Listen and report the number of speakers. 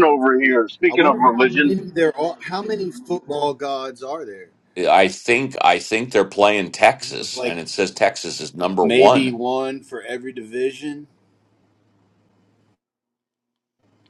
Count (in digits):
3